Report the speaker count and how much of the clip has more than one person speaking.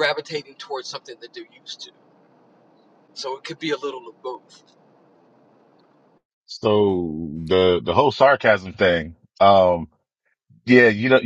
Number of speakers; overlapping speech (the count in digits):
2, no overlap